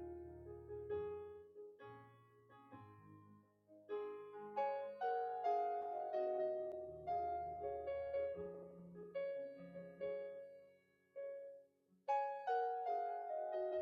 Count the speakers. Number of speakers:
0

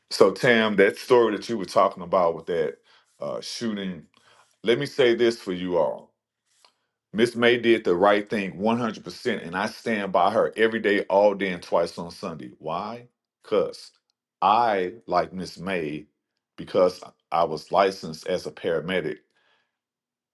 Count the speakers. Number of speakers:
1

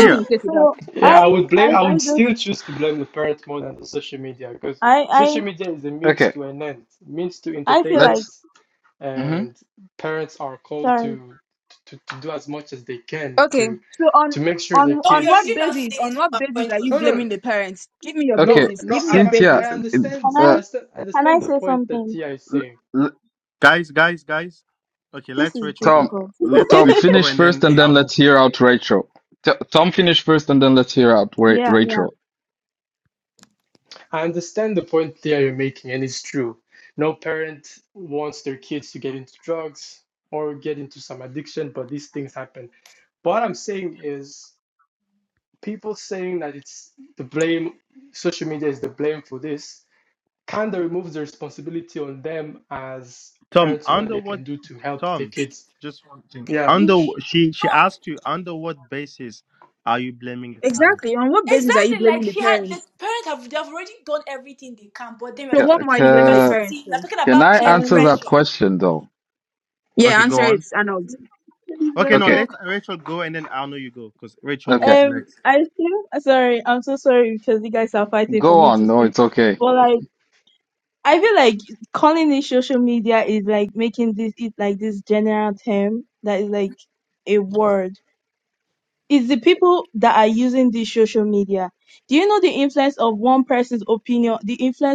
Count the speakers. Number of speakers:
6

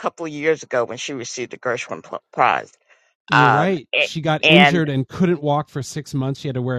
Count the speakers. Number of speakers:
2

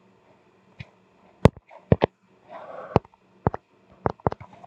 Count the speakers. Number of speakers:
0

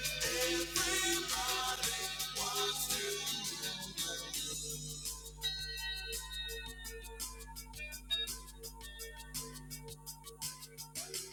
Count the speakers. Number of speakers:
0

